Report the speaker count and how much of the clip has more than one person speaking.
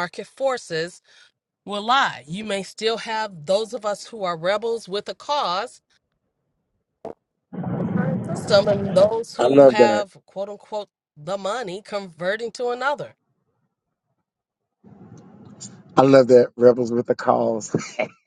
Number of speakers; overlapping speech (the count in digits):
2, about 4%